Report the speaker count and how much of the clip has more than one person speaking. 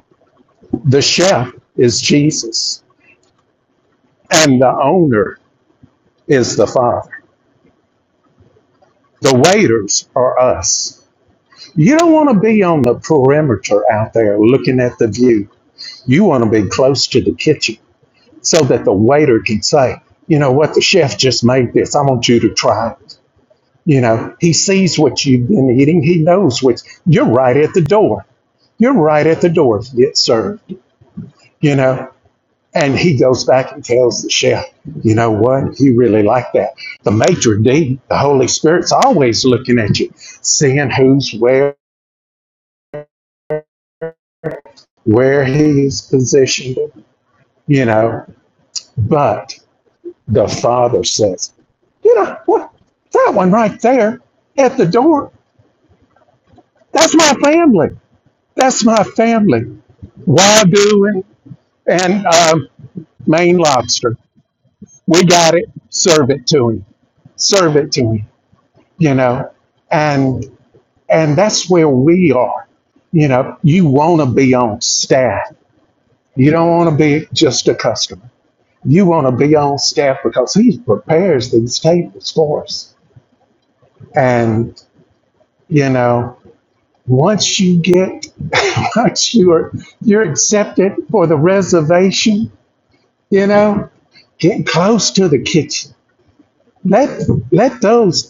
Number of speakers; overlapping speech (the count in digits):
1, no overlap